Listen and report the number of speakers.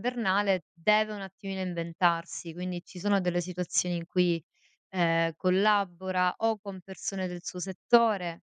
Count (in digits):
1